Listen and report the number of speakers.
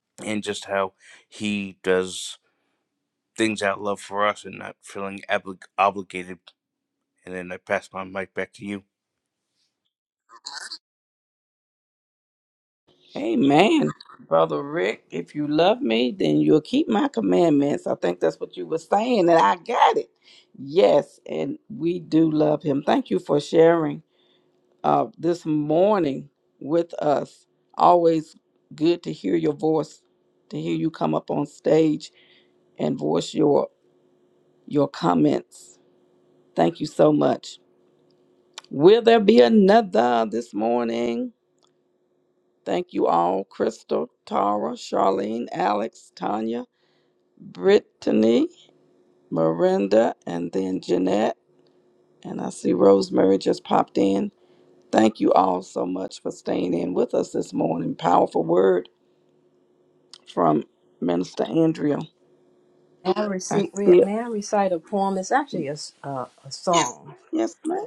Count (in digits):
3